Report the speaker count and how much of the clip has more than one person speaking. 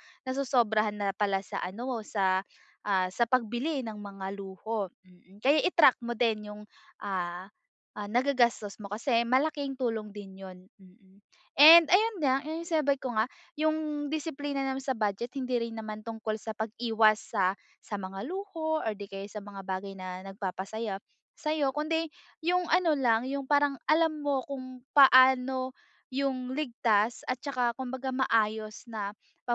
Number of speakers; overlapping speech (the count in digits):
1, no overlap